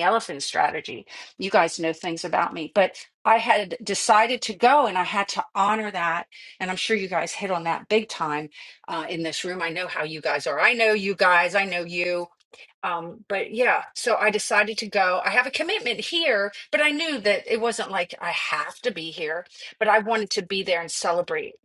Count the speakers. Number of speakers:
one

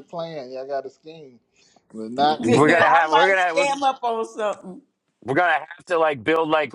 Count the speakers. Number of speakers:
three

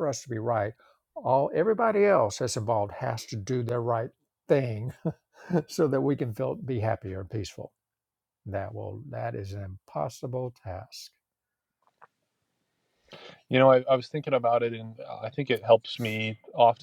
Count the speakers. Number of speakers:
two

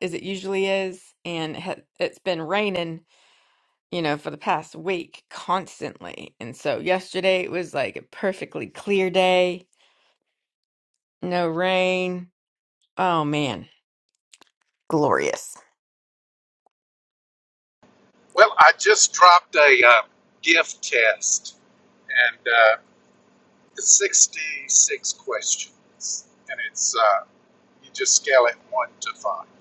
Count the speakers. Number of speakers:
two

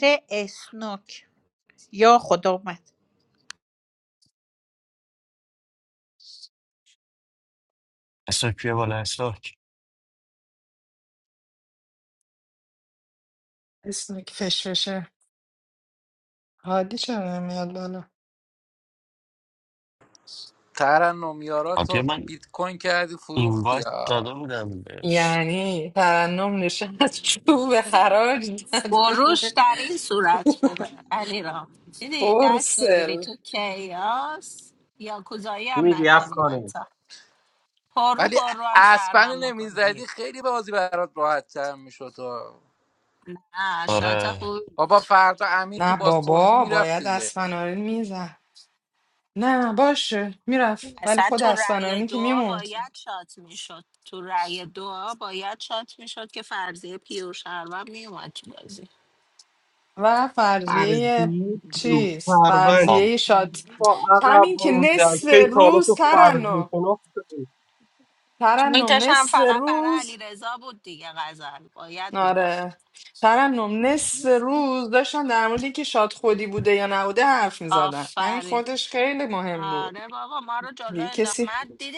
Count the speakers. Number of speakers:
six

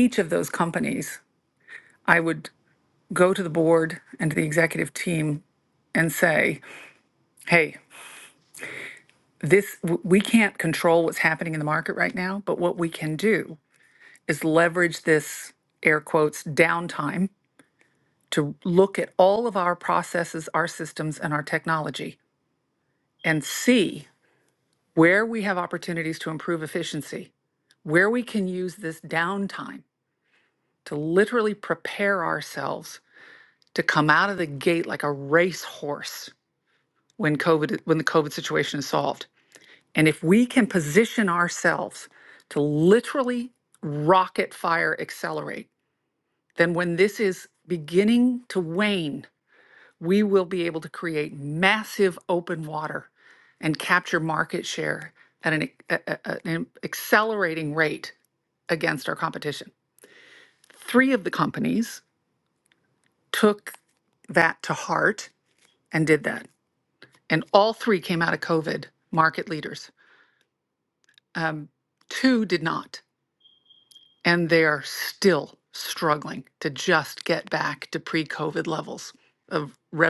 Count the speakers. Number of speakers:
one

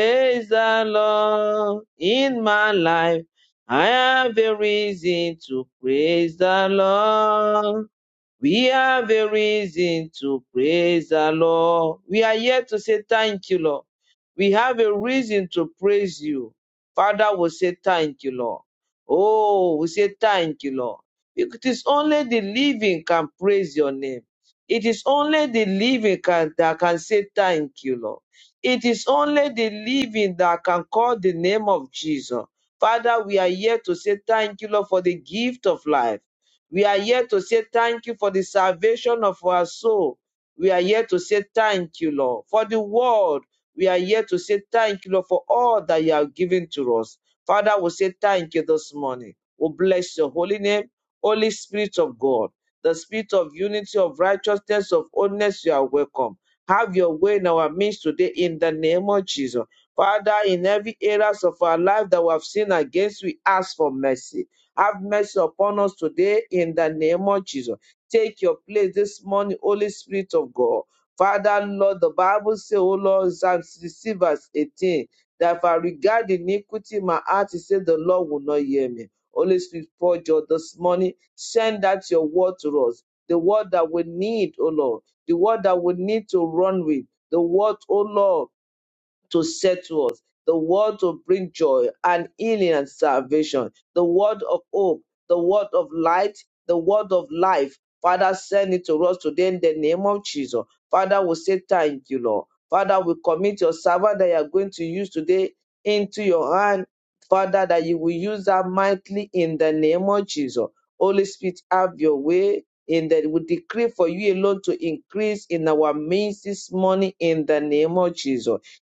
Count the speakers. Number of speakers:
one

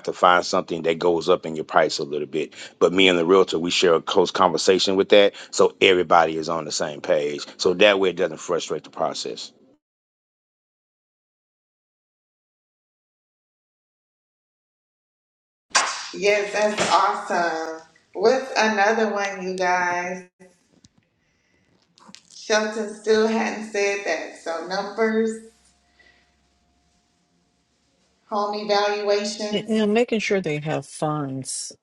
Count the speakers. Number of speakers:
three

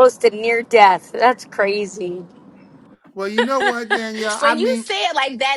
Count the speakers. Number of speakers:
three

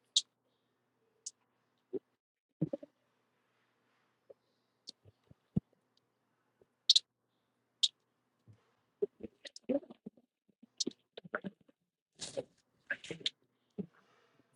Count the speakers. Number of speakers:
zero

